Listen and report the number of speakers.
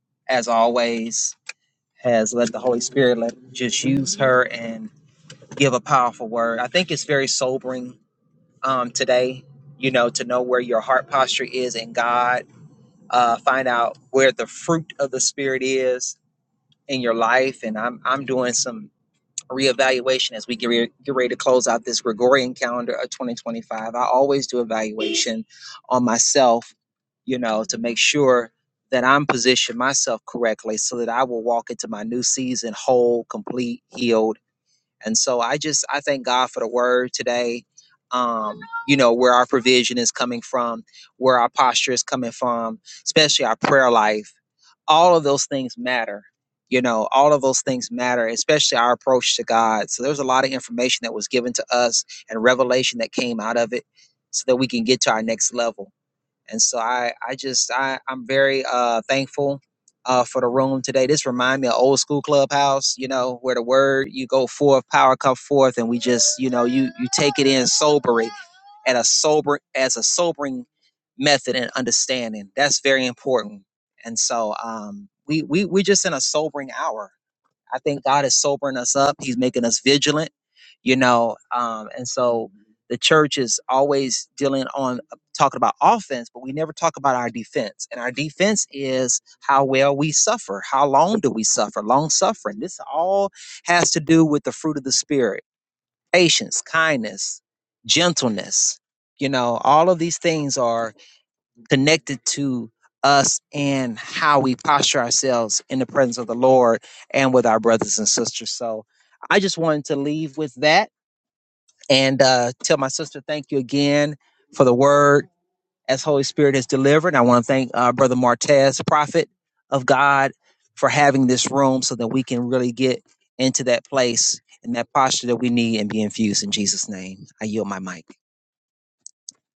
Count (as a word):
one